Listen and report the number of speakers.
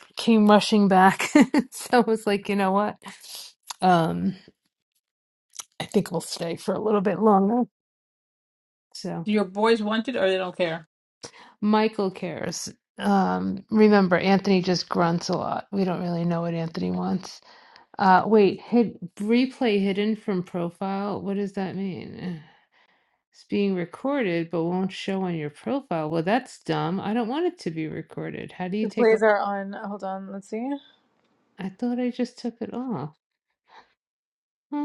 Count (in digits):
3